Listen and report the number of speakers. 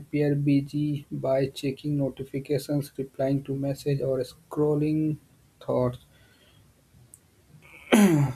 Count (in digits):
1